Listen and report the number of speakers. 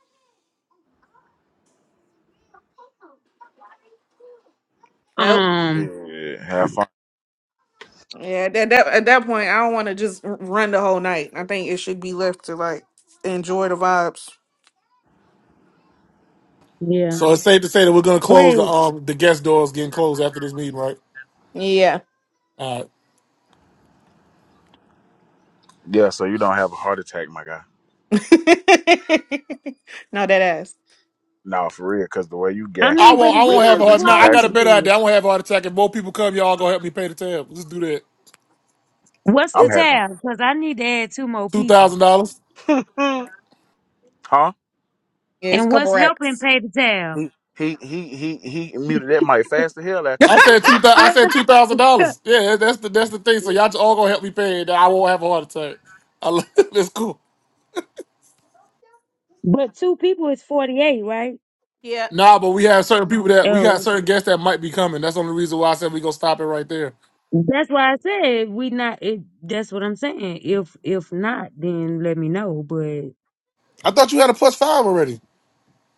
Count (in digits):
4